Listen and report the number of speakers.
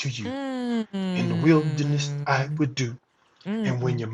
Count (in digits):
2